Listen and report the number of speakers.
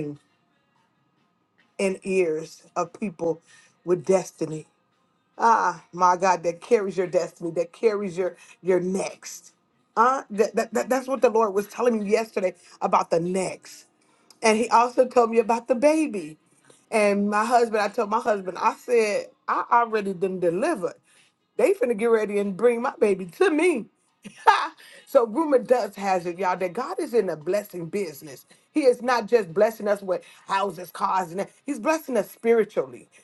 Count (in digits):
1